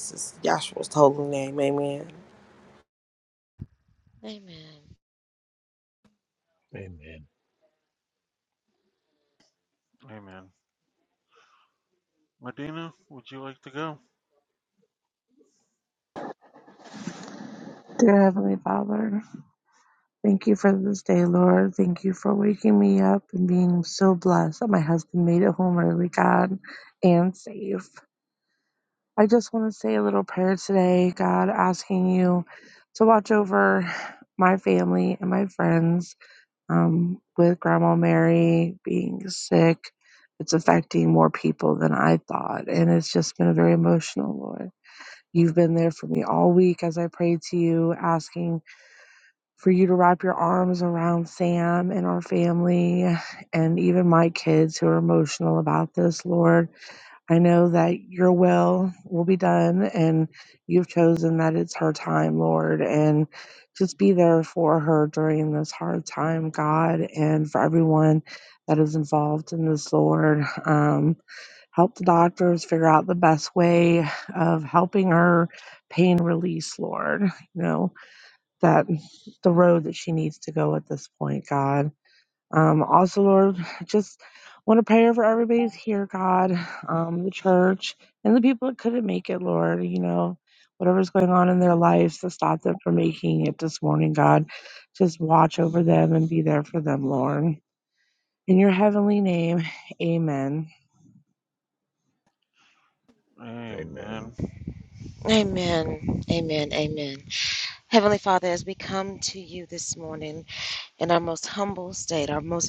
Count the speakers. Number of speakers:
five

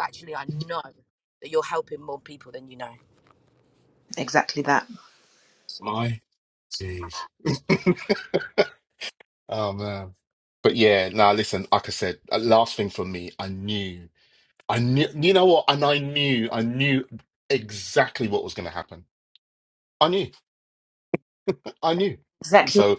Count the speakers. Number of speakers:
three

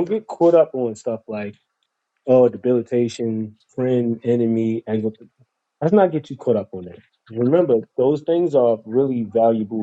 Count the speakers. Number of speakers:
one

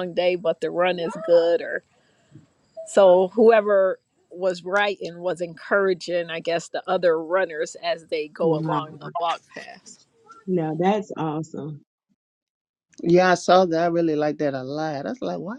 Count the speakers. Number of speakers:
three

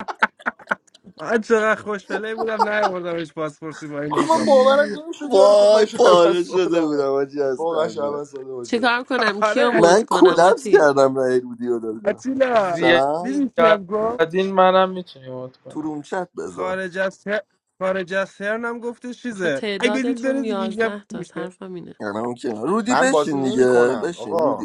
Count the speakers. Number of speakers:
five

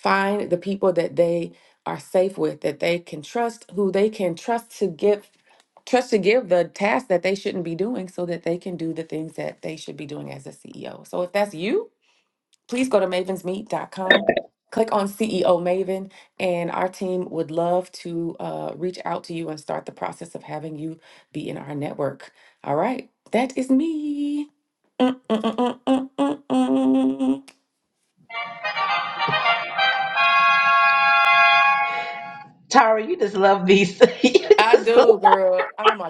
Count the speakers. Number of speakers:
two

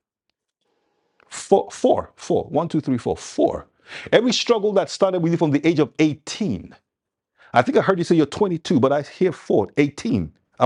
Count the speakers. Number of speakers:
one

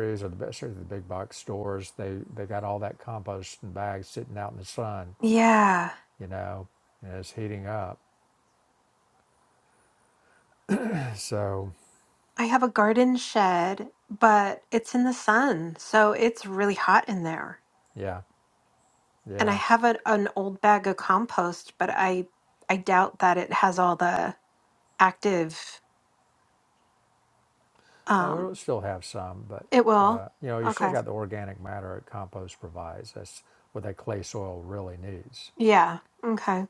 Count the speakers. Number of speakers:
two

